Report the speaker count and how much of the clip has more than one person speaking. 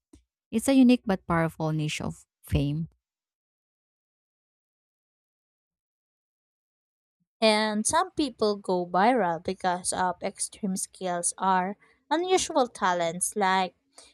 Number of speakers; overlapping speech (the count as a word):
two, no overlap